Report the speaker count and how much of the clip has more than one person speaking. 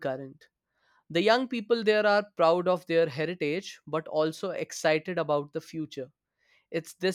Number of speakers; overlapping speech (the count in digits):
1, no overlap